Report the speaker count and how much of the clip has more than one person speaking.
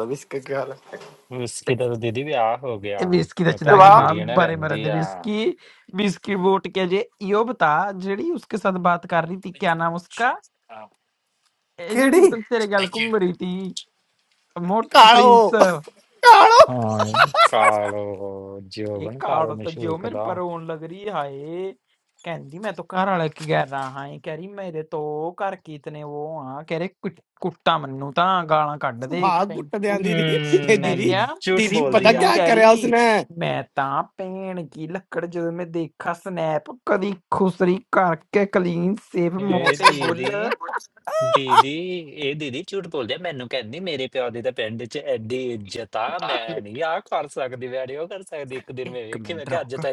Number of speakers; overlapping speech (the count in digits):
3, about 19%